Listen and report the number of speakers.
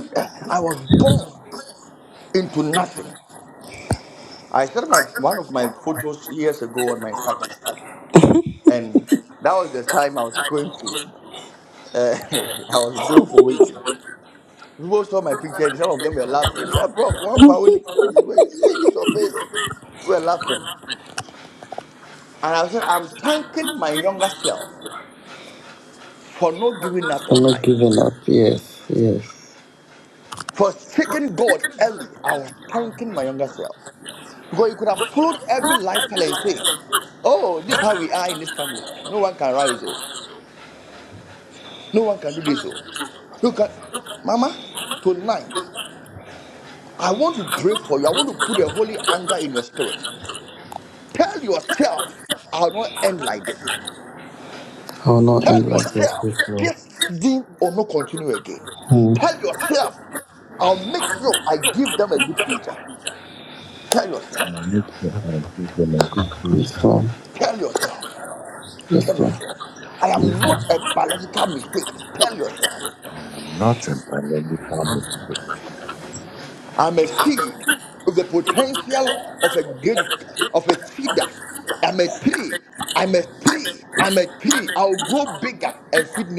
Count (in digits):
3